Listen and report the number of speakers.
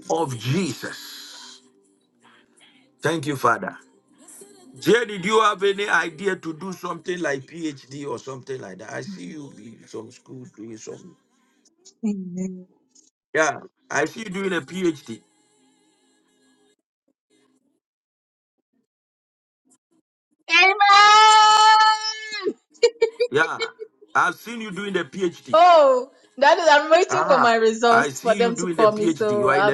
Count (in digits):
2